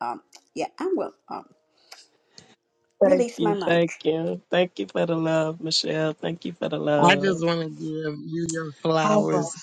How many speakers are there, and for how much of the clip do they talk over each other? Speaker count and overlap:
3, about 17%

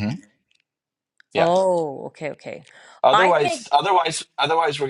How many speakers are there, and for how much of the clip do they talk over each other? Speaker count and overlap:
2, about 13%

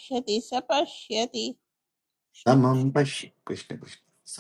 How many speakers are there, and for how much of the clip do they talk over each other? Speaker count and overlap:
2, about 3%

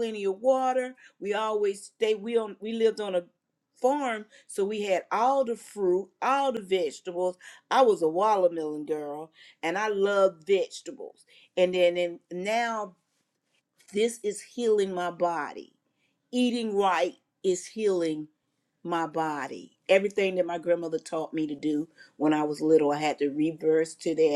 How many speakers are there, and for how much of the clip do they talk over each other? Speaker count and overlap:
1, no overlap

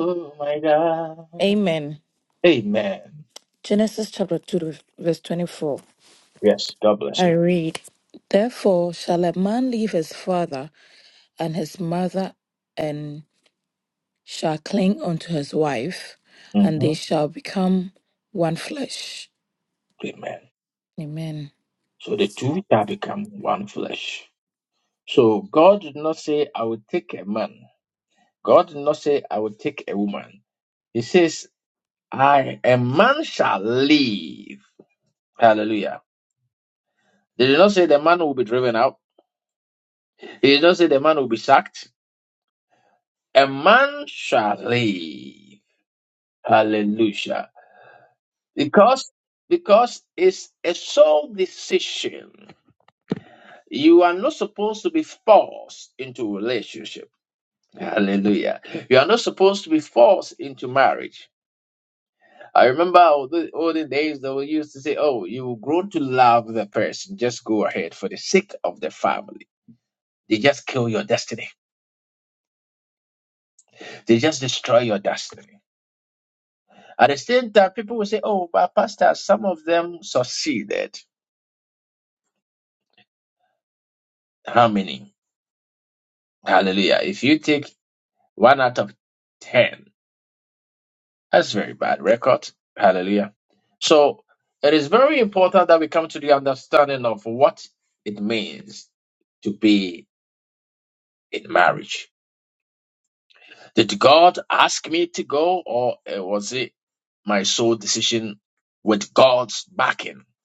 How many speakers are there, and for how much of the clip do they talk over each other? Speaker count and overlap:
2, about 1%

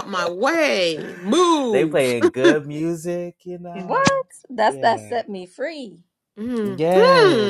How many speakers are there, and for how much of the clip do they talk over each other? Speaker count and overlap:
3, about 27%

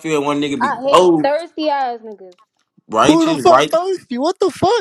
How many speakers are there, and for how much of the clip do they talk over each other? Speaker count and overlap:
3, about 29%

